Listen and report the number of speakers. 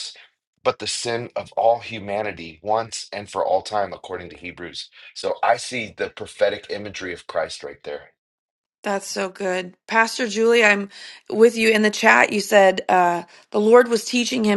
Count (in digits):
2